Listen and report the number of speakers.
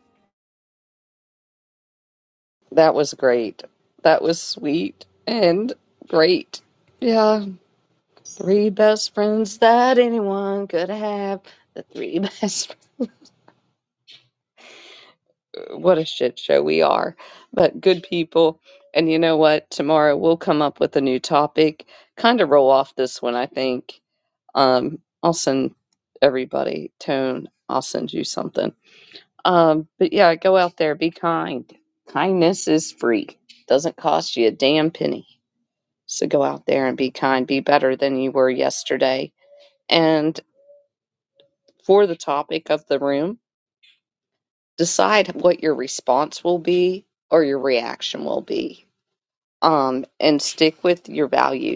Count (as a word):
one